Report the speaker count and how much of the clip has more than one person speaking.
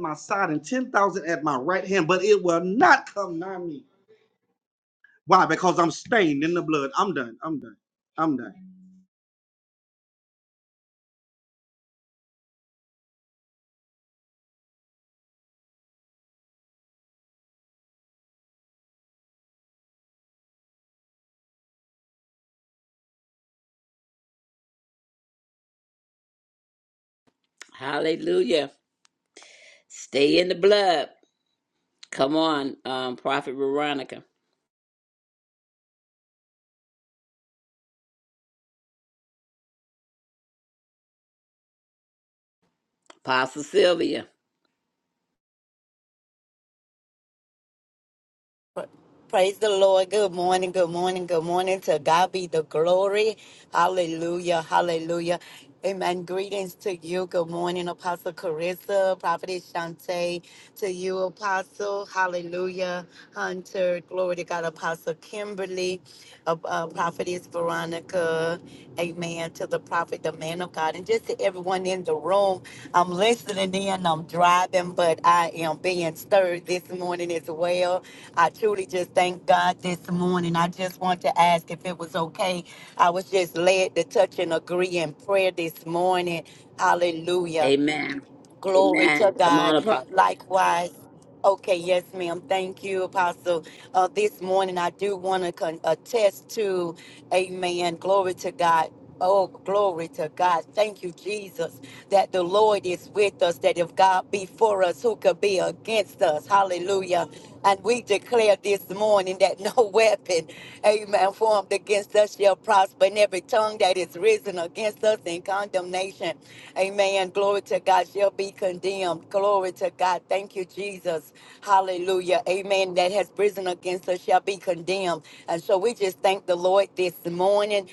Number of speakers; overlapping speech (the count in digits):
3, about 1%